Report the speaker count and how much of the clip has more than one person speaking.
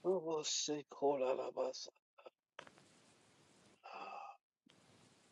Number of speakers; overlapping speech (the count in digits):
1, no overlap